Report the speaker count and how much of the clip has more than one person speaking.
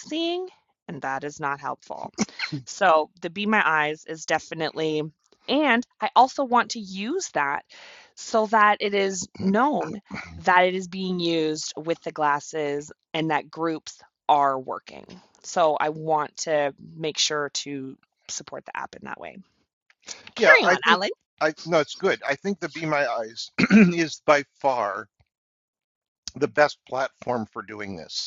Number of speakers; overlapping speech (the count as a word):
two, about 2%